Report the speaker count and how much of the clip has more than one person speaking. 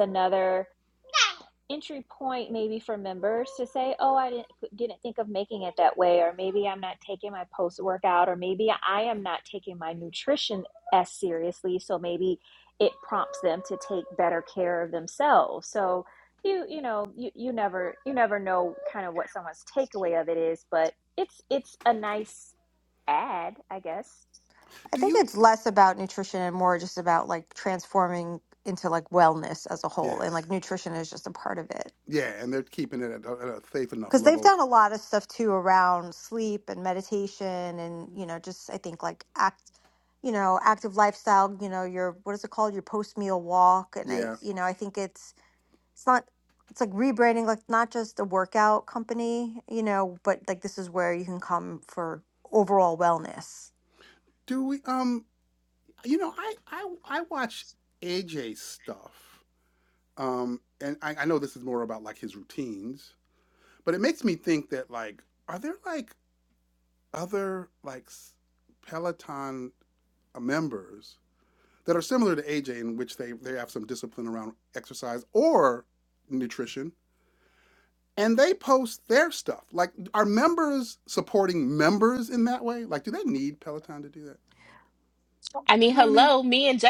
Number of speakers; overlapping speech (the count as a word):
four, about 2%